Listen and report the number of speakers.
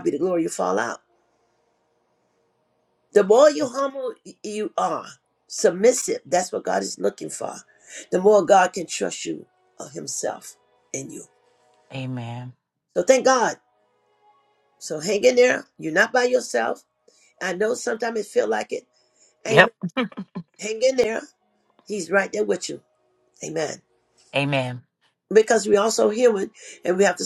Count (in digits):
2